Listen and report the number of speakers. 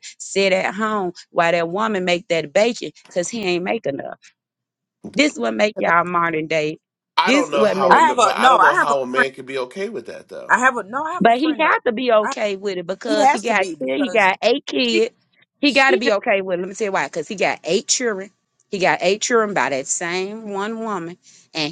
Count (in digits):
3